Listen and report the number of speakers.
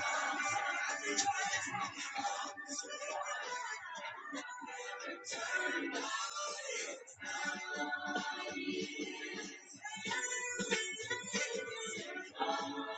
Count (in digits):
0